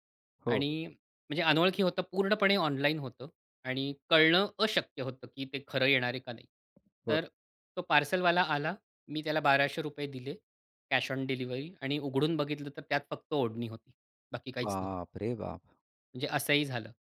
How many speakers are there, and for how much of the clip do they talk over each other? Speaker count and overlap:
two, about 3%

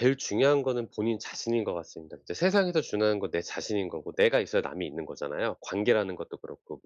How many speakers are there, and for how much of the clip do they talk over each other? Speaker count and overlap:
one, no overlap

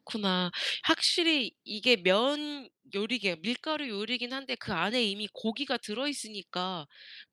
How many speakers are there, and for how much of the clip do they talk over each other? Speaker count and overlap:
one, no overlap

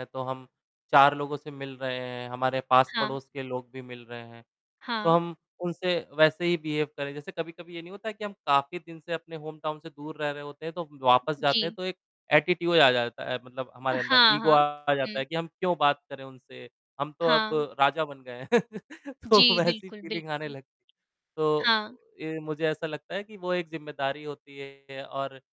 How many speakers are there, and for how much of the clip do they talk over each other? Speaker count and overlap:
two, about 13%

